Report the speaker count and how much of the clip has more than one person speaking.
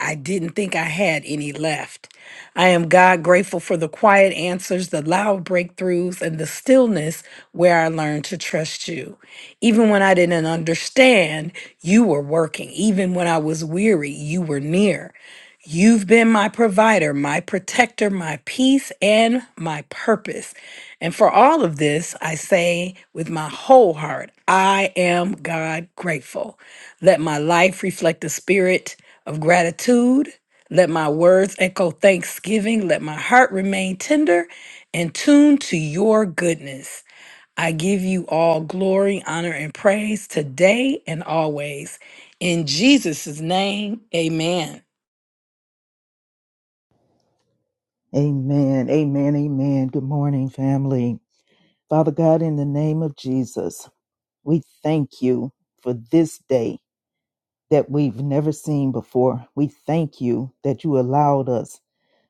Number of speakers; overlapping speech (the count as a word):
two, no overlap